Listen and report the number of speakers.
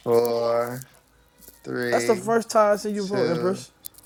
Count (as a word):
two